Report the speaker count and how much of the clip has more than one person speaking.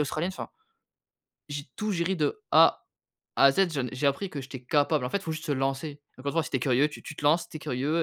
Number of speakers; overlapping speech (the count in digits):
1, no overlap